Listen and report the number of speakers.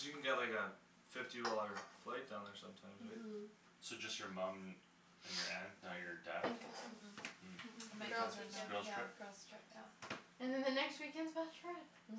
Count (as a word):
four